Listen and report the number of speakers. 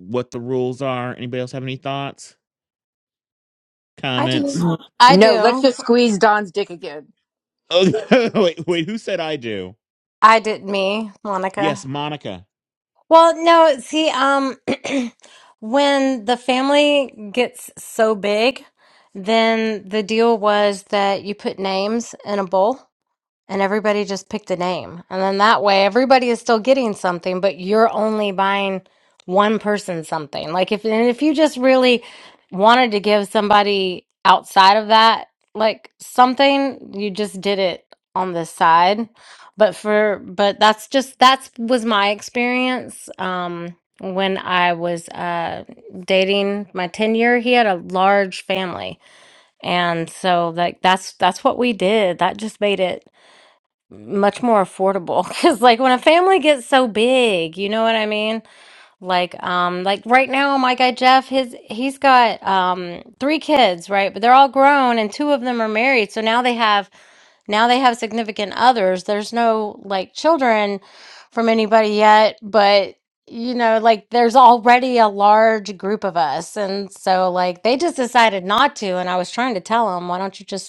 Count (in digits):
3